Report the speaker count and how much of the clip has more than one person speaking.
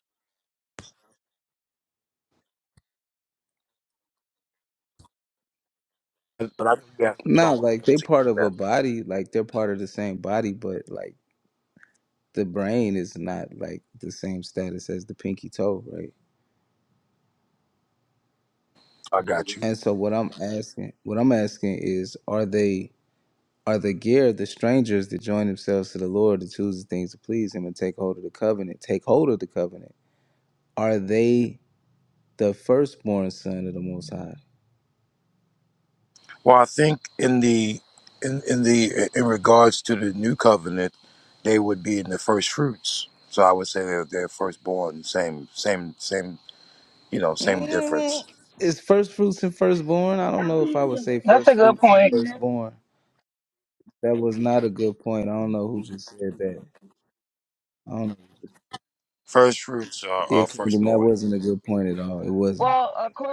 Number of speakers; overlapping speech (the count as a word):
three, about 7%